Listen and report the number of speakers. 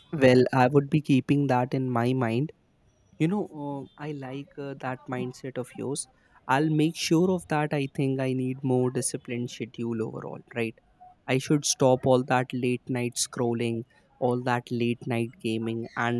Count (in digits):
1